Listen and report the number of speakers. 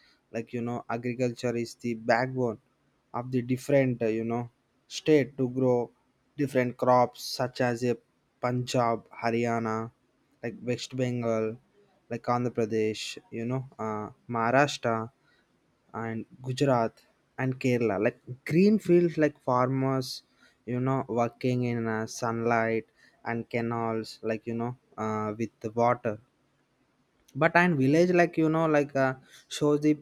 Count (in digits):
1